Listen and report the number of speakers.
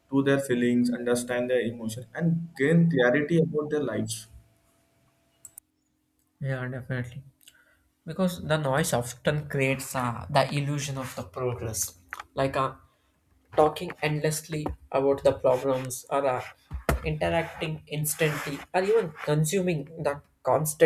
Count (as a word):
two